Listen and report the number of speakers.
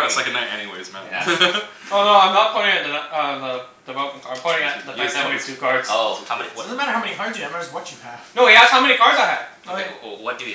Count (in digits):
4